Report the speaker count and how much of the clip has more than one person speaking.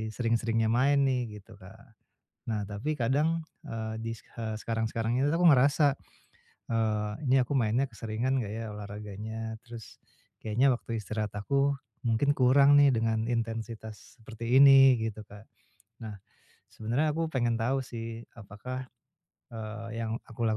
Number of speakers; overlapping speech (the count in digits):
1, no overlap